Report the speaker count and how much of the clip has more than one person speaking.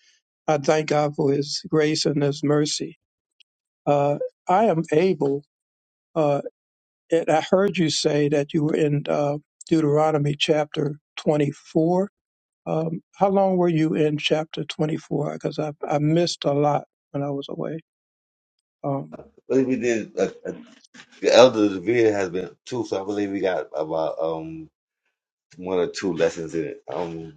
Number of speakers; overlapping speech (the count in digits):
2, no overlap